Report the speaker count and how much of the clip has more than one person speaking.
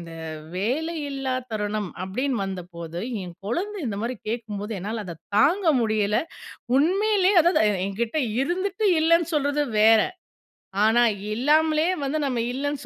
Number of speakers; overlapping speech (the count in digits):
1, no overlap